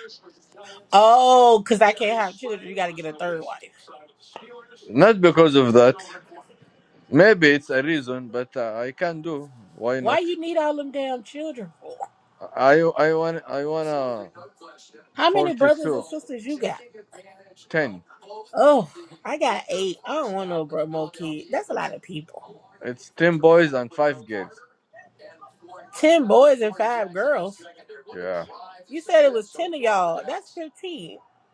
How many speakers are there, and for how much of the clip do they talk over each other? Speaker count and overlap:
2, about 3%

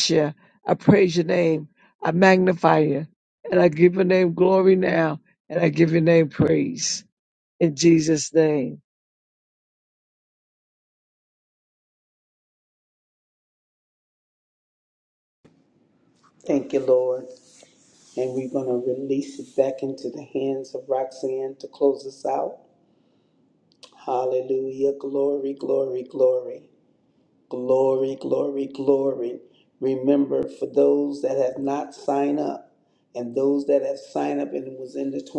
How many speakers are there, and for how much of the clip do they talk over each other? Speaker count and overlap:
2, no overlap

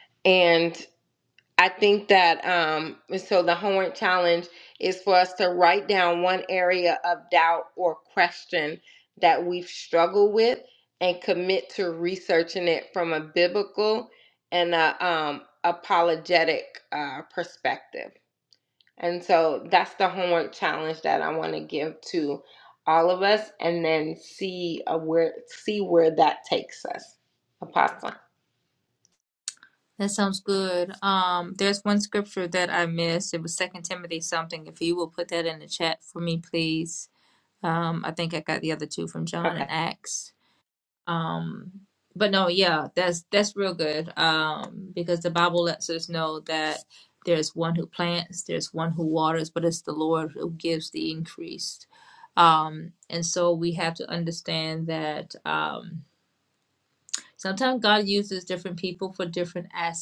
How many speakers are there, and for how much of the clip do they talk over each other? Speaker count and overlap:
2, under 1%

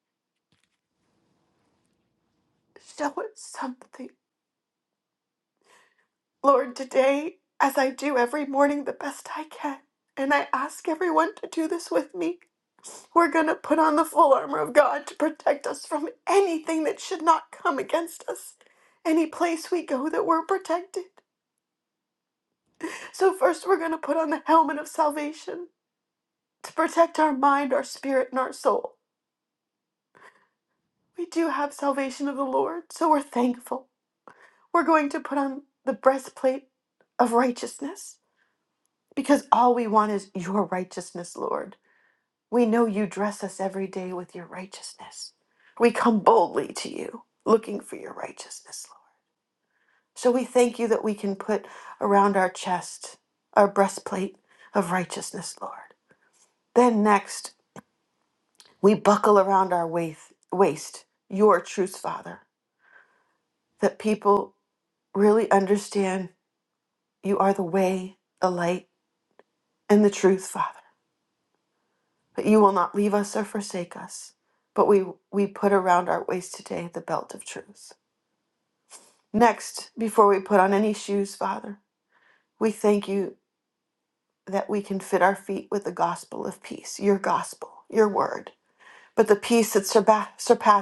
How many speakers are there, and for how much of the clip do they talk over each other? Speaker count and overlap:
1, no overlap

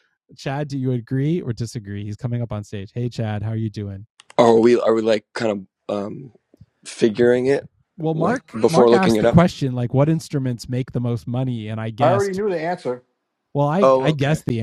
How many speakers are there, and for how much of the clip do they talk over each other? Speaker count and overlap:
3, about 15%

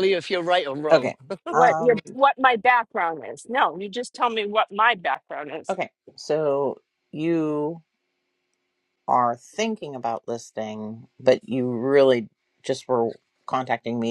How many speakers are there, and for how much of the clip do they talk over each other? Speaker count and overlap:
3, about 5%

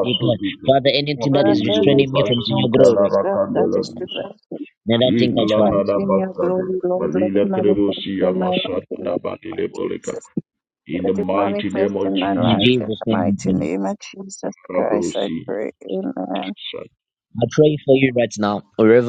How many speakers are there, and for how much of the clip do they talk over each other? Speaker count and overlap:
3, about 54%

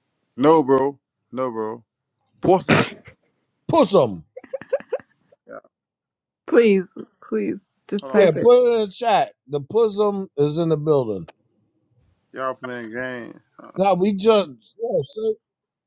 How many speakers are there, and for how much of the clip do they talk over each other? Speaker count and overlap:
3, about 3%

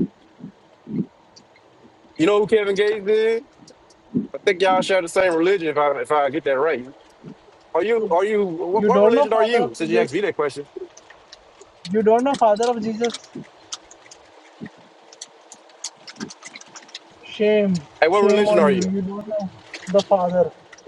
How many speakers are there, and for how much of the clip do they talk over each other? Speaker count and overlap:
2, about 10%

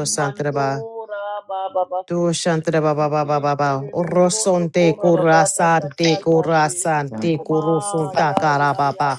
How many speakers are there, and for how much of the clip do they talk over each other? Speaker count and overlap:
2, about 61%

